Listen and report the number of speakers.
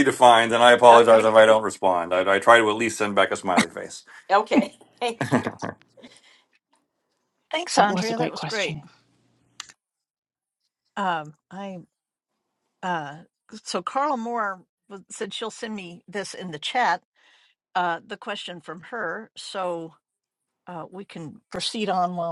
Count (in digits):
3